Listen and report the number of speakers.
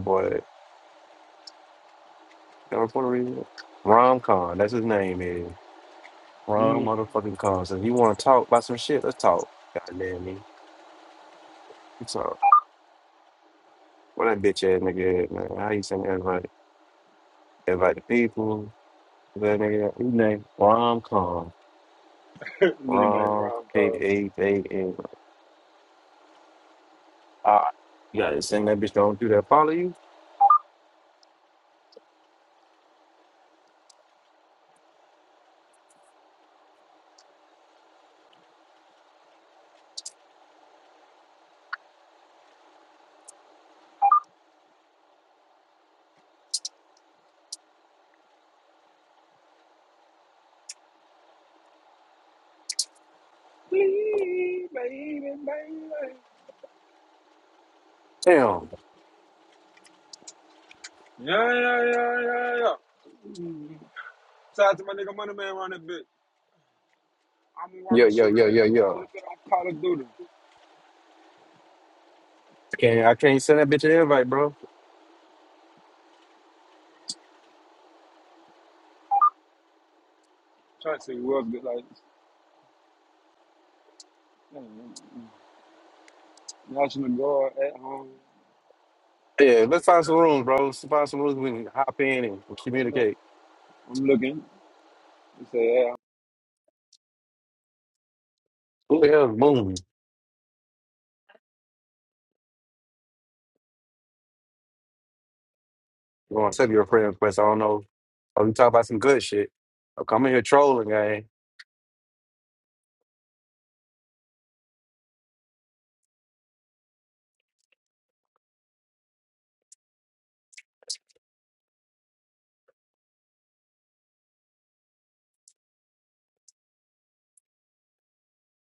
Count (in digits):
2